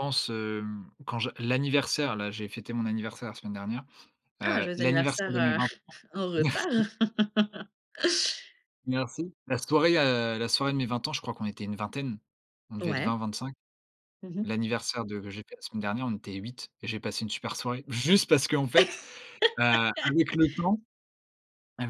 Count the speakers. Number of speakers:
2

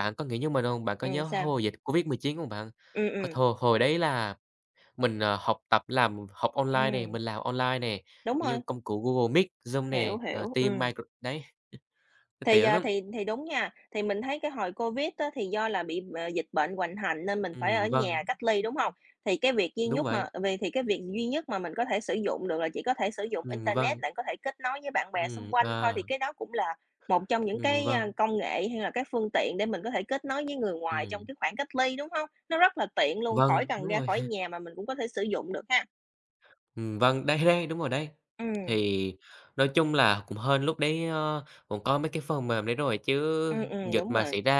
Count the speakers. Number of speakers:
2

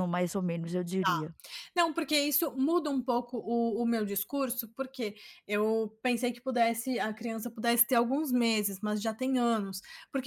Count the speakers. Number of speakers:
2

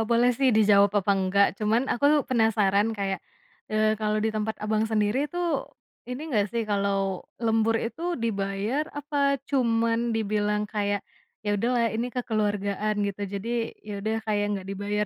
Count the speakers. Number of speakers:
1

